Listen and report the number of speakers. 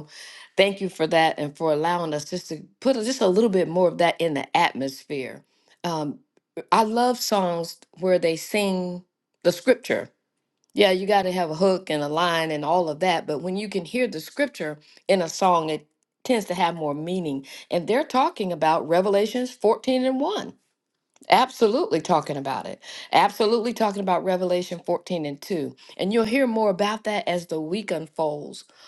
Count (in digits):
1